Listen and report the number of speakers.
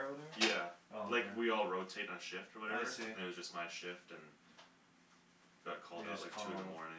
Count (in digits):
2